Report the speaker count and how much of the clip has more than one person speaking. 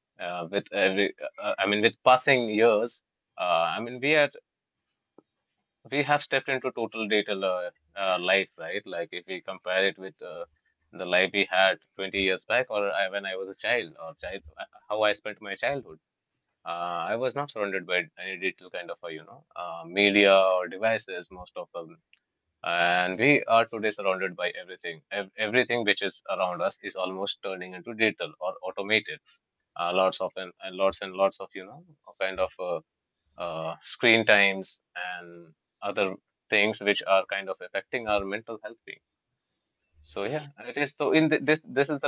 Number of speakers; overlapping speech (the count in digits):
1, no overlap